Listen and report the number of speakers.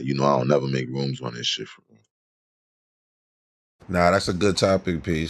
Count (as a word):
two